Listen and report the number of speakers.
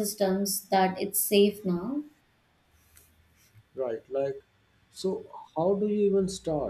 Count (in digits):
2